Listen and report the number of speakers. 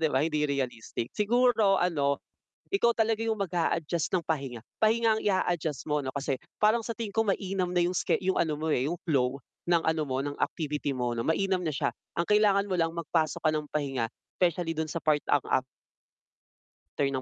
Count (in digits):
1